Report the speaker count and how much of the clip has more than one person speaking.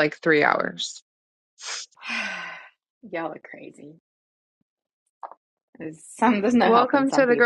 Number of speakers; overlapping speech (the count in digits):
2, about 11%